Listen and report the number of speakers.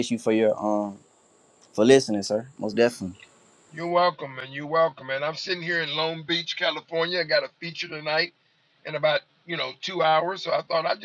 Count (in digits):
2